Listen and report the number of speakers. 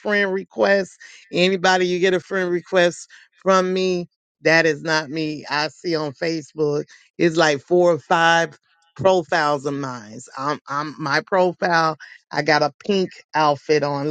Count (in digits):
1